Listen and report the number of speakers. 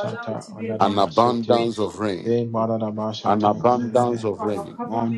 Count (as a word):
three